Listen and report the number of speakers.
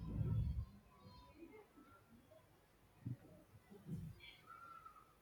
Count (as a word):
zero